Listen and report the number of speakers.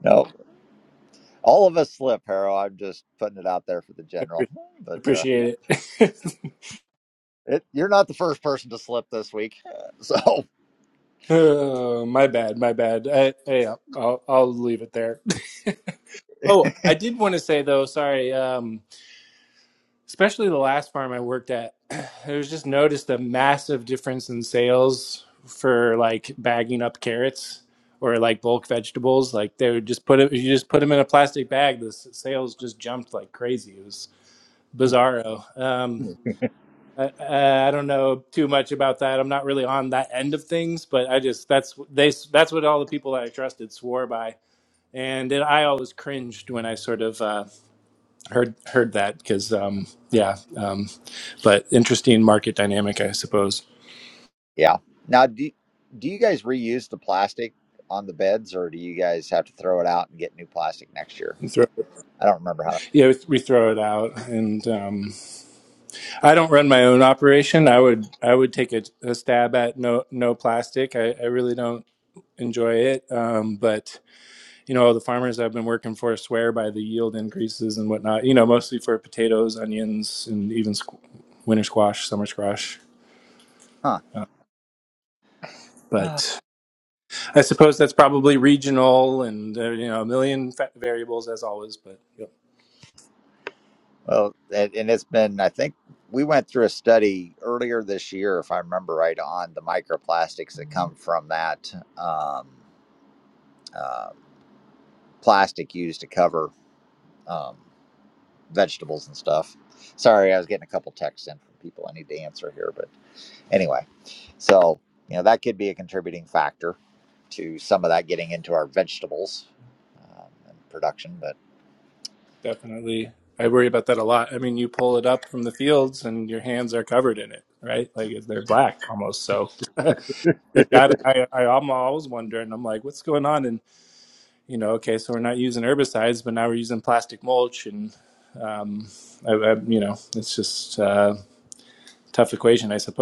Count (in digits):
2